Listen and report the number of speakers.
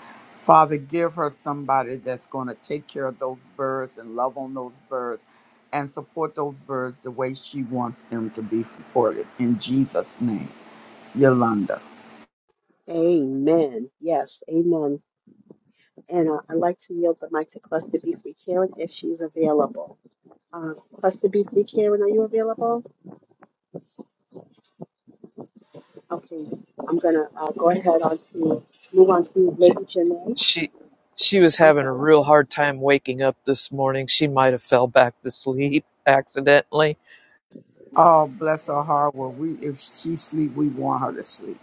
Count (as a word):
three